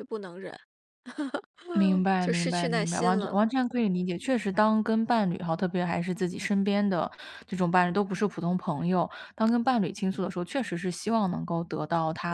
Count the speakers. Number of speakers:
2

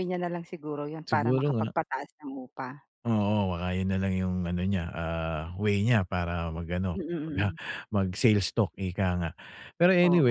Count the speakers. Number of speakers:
2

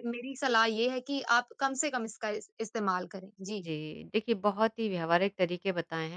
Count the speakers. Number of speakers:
2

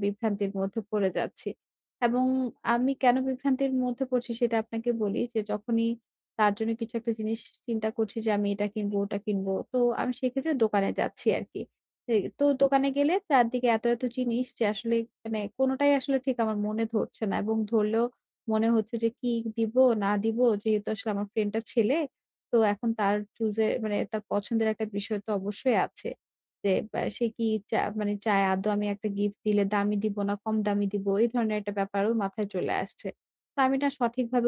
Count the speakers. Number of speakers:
1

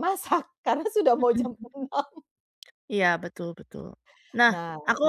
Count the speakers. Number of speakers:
2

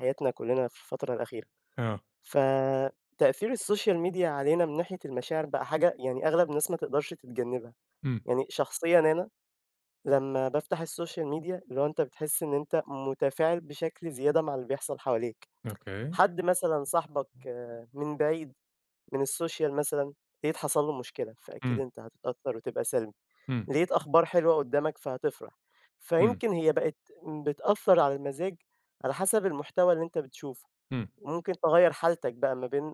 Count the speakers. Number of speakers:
2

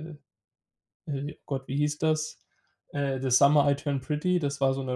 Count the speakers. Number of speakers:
1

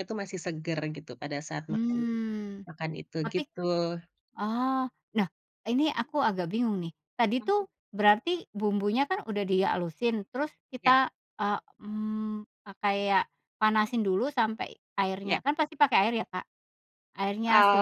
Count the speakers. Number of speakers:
2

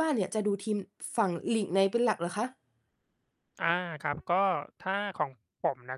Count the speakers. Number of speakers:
2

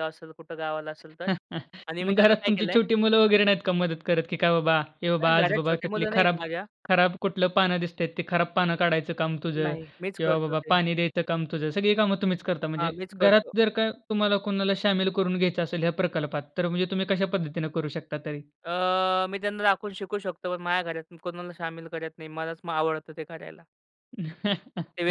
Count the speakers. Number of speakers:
2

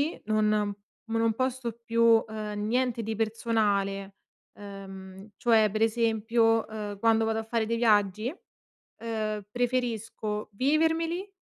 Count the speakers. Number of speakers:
1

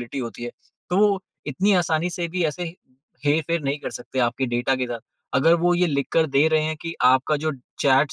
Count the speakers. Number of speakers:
1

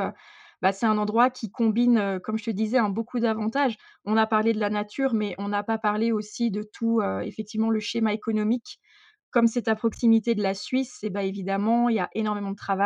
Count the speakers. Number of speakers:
1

